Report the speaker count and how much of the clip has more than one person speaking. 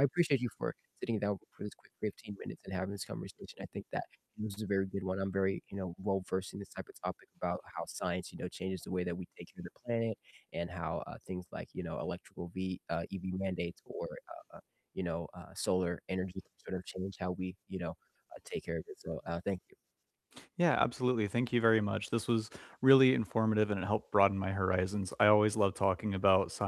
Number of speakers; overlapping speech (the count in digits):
2, no overlap